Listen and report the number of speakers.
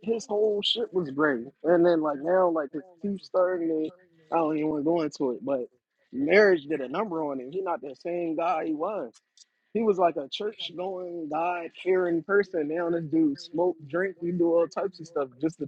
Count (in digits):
1